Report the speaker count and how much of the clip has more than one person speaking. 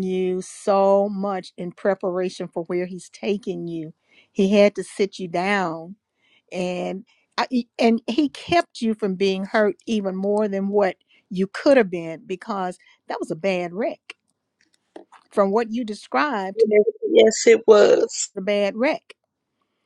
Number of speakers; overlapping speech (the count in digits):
2, no overlap